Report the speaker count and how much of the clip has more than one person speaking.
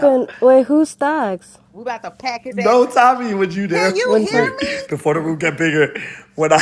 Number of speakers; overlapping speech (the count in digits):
3, about 24%